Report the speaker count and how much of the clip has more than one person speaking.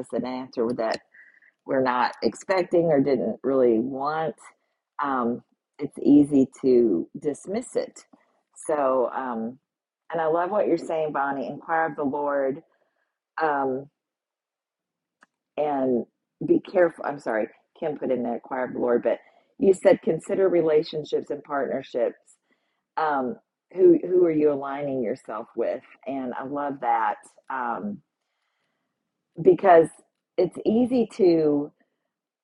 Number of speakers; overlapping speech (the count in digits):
1, no overlap